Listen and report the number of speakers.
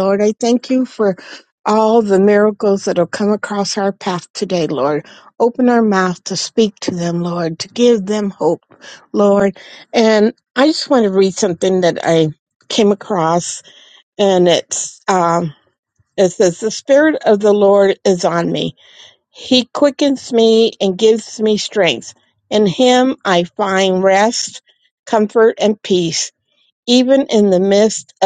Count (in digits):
1